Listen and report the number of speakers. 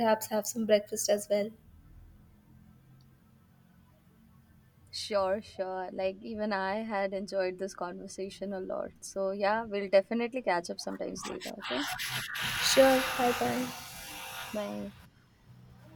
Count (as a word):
two